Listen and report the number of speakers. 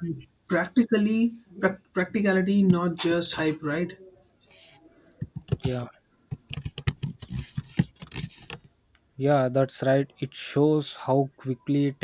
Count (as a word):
two